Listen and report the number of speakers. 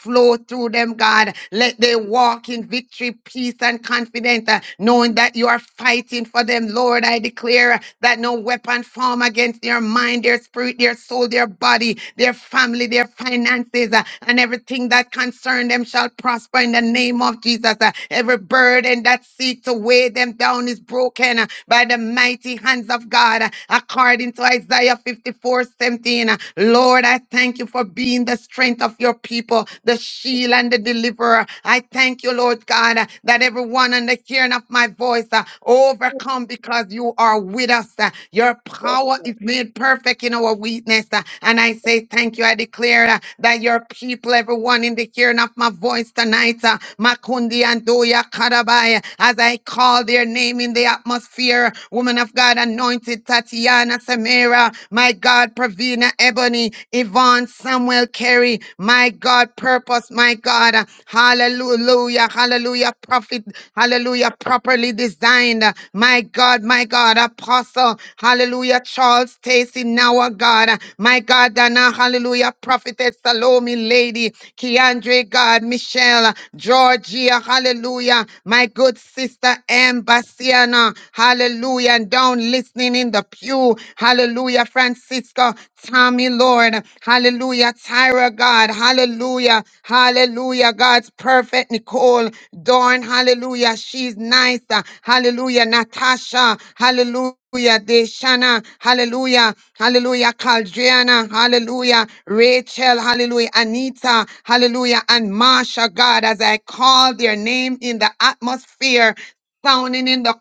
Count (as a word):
one